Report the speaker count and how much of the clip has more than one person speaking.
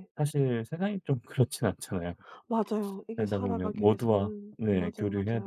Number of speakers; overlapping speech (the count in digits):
2, about 42%